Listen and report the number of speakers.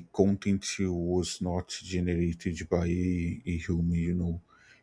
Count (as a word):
one